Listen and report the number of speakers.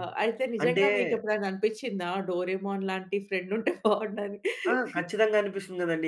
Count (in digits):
2